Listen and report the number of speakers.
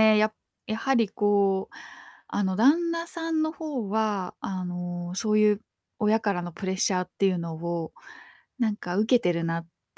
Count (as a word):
one